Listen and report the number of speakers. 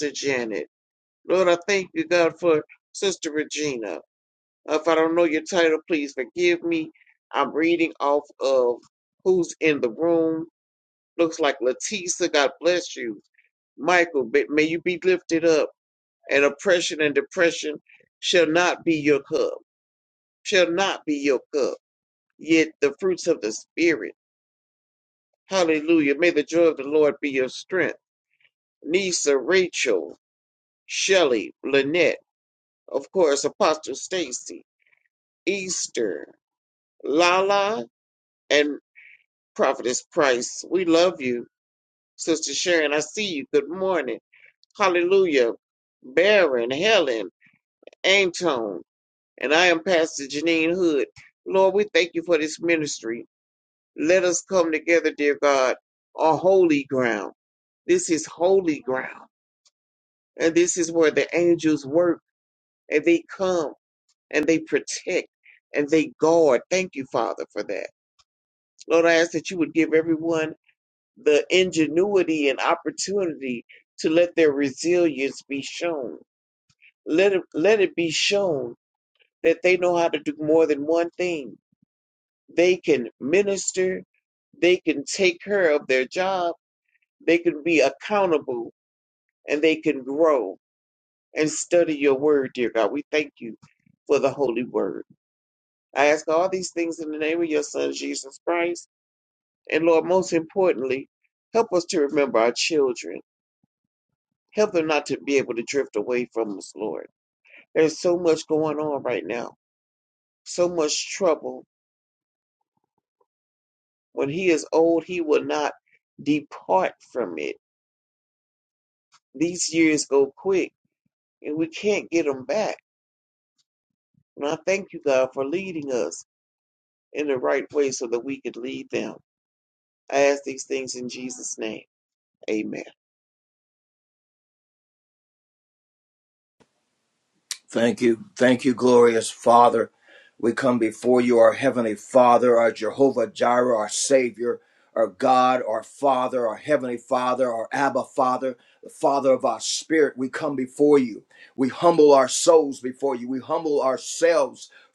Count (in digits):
2